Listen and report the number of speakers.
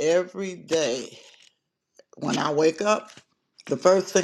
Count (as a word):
one